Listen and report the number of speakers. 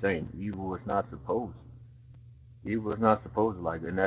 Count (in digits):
1